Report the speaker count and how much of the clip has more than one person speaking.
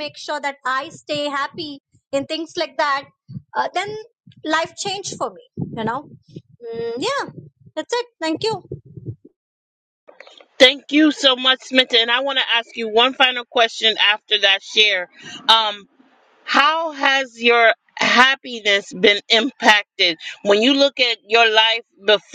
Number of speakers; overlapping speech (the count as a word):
two, no overlap